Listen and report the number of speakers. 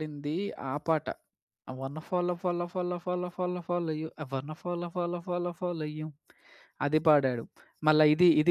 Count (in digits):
1